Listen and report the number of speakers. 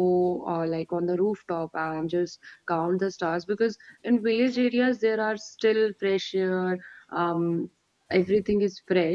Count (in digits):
1